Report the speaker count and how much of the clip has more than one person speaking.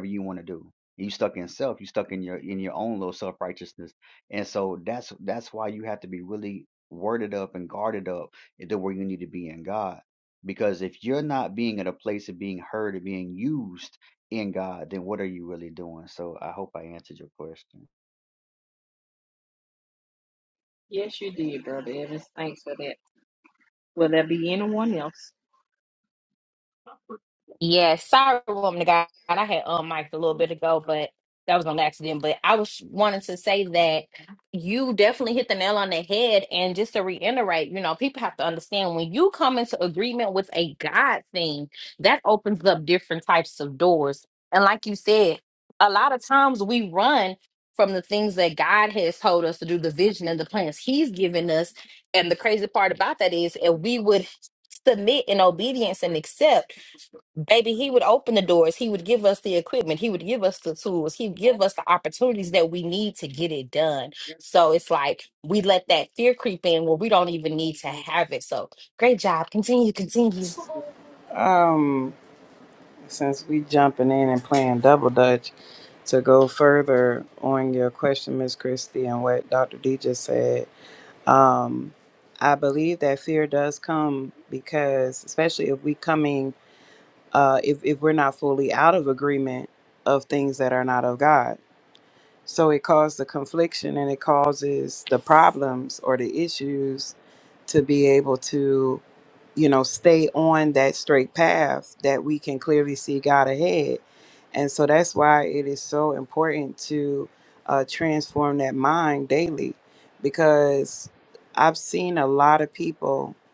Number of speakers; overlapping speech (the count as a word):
four, no overlap